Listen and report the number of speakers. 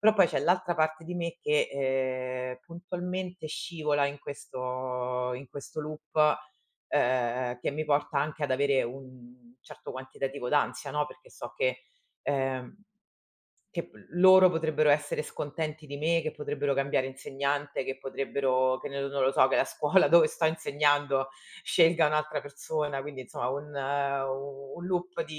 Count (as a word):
one